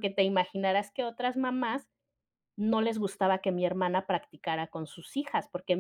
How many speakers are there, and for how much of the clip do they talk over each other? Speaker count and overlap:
1, no overlap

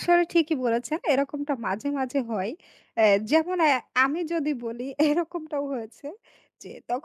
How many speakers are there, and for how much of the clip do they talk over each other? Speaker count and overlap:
1, no overlap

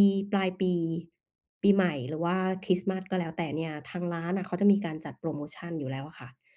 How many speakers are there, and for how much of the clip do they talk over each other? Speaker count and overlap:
1, no overlap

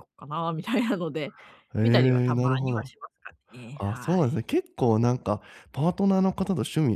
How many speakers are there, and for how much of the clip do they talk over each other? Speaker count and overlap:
2, about 22%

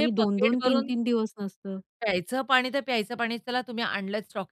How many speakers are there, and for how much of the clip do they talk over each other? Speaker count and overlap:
2, about 21%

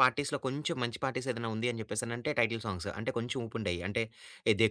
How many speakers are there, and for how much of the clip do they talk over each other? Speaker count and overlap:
1, no overlap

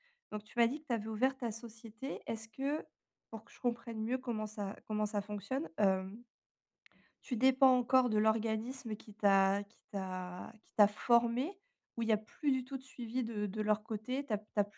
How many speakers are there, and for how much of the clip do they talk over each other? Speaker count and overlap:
1, no overlap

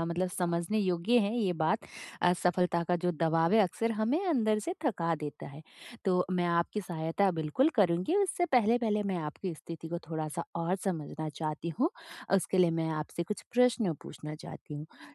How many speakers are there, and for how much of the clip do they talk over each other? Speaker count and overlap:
1, no overlap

